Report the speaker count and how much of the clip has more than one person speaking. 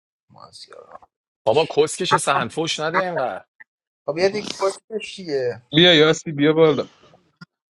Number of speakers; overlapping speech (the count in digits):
3, no overlap